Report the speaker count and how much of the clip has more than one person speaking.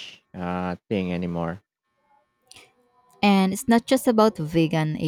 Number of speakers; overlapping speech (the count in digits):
2, no overlap